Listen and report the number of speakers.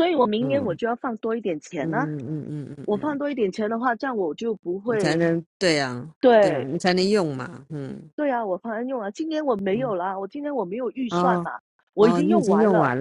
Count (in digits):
2